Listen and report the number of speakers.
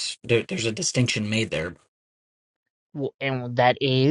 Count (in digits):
2